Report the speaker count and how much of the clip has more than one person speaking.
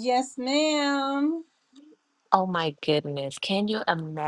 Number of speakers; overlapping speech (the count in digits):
2, no overlap